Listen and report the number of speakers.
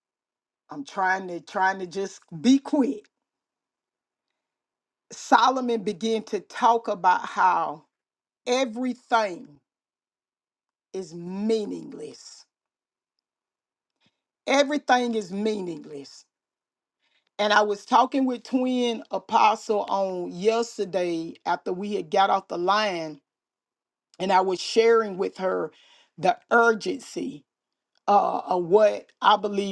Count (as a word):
one